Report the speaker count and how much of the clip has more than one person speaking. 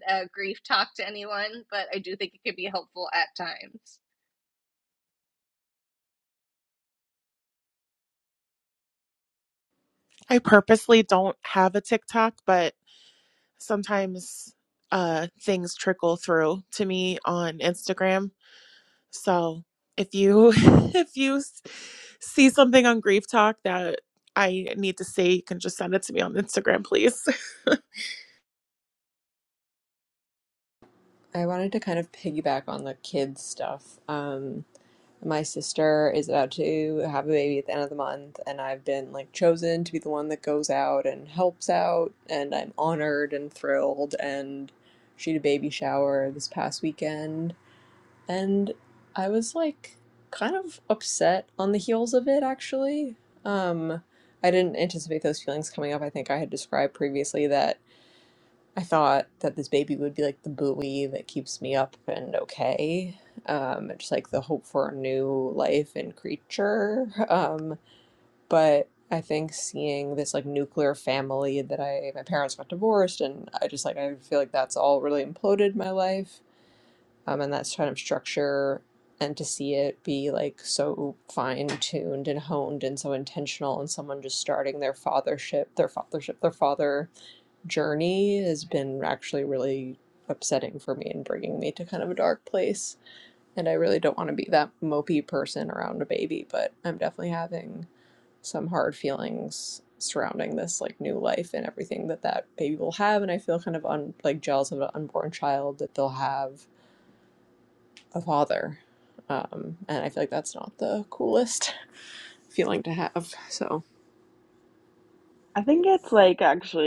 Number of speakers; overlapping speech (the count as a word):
four, no overlap